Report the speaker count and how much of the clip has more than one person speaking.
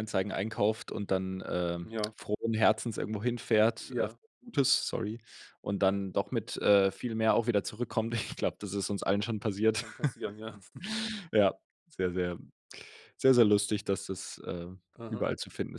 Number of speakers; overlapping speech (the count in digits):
2, about 2%